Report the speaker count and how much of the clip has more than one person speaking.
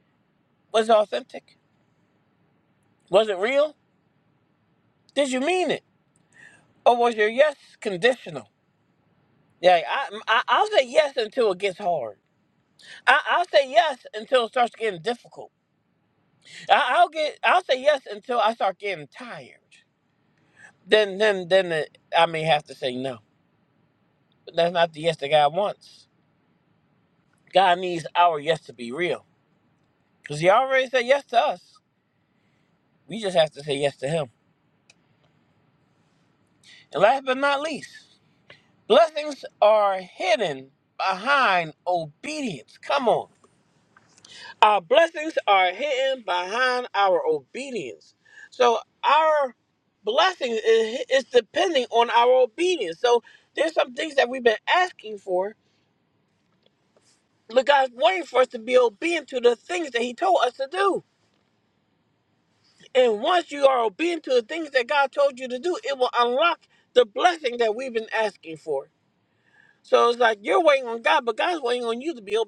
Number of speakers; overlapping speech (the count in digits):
1, no overlap